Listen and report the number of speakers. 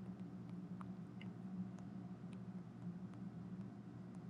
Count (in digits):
0